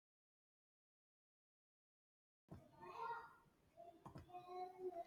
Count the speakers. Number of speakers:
0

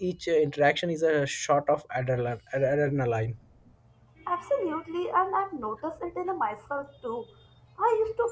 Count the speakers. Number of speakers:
2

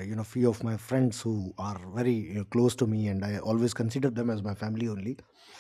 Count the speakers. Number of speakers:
1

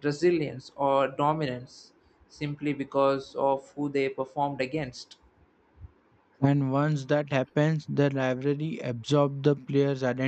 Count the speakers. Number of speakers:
2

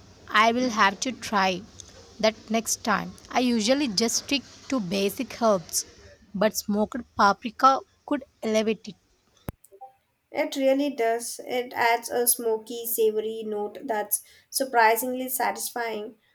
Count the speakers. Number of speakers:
2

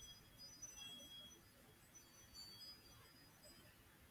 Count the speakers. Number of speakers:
0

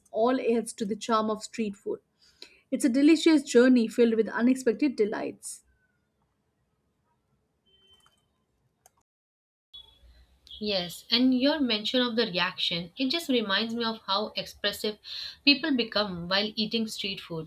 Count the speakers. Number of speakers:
2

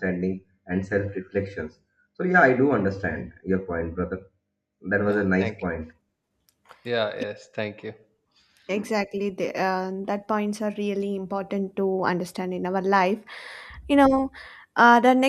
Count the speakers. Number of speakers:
3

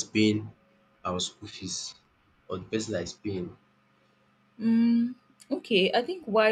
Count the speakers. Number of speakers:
2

